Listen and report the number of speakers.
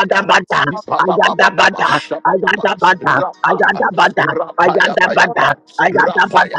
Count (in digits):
2